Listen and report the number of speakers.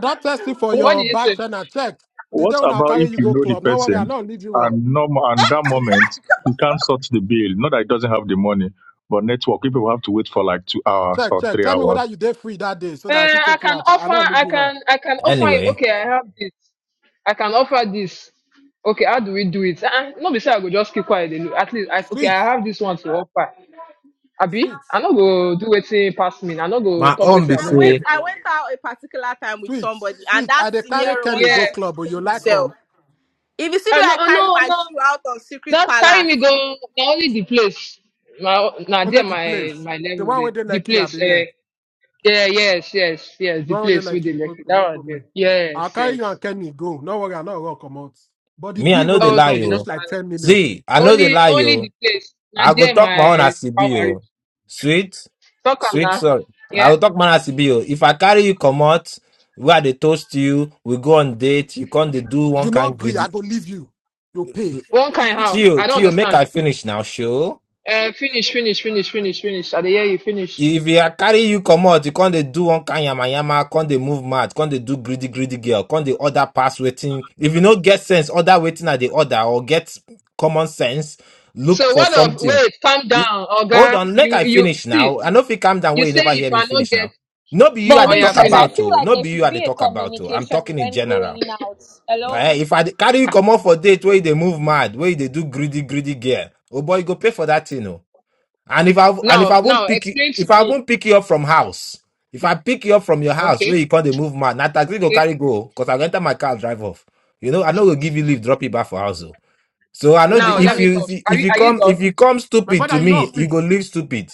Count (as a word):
six